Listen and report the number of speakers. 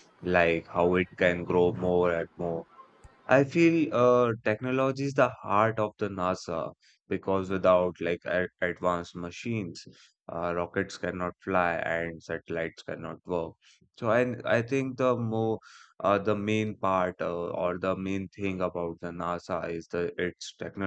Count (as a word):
one